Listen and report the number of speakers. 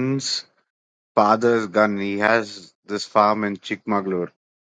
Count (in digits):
1